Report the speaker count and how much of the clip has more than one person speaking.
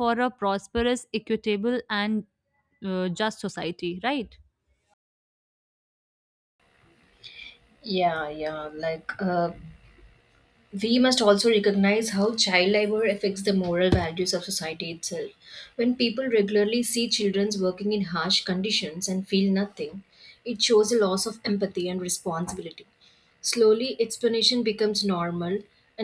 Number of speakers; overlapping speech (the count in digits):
2, no overlap